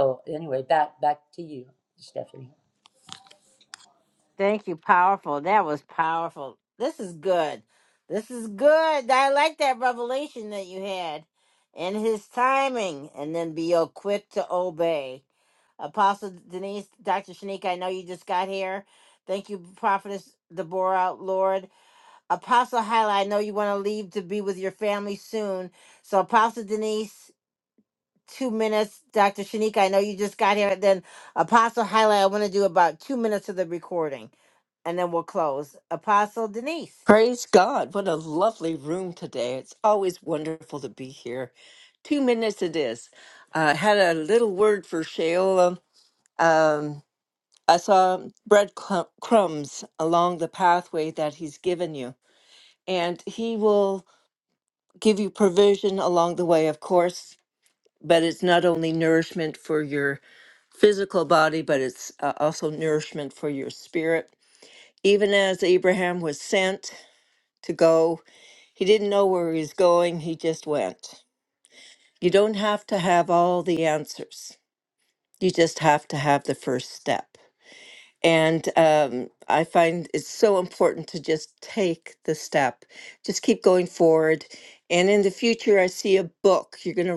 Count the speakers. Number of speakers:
3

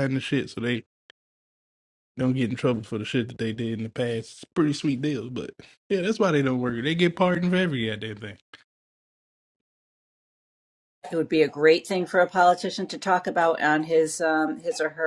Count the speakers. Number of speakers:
2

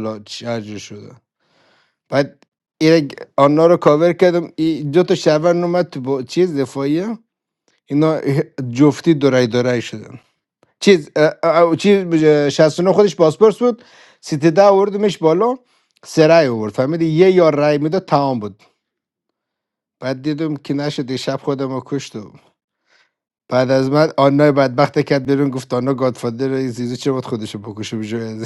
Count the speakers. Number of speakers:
1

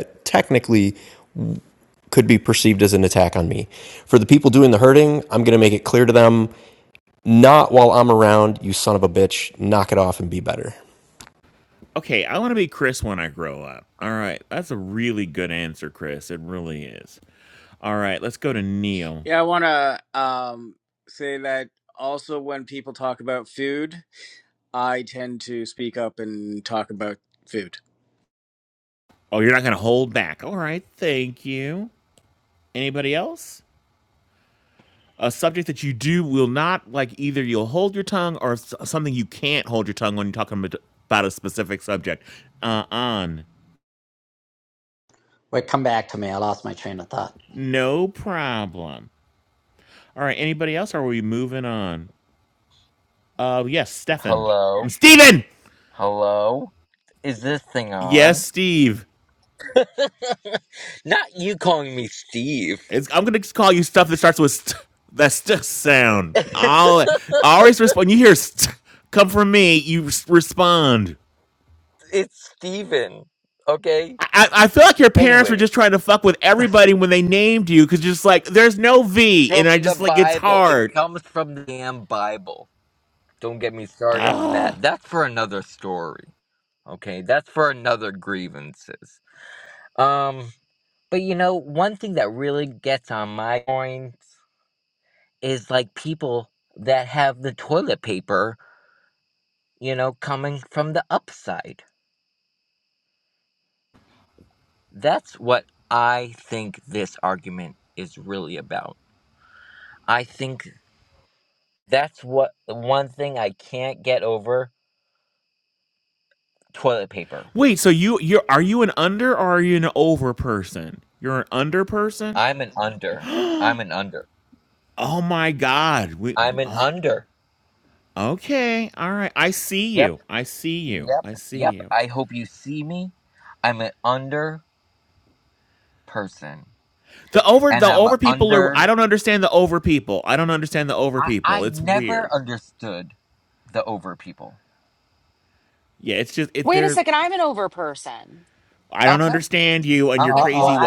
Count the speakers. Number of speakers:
6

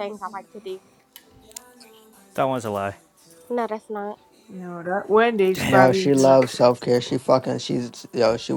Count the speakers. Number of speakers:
4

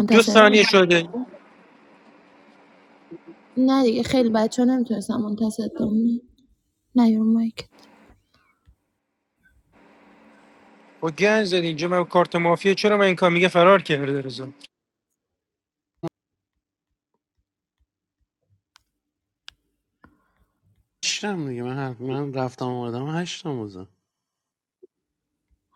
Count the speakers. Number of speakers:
3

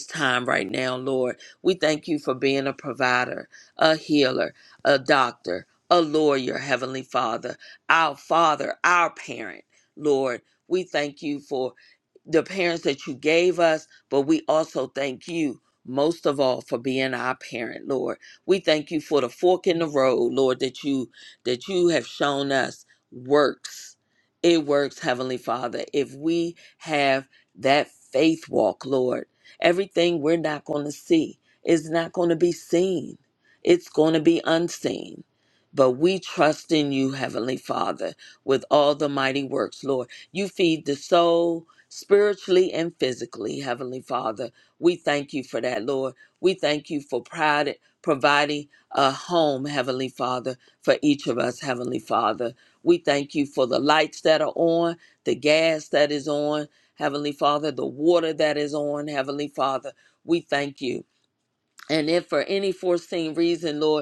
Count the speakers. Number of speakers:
1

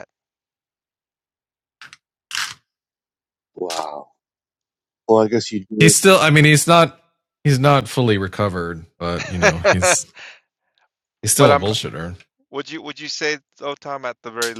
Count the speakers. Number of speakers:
3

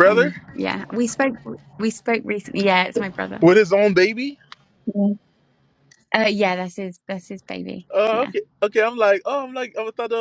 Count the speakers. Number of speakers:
2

